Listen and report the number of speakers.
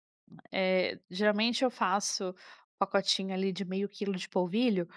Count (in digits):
1